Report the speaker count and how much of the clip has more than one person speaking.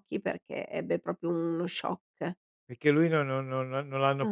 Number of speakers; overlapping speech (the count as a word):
two, about 2%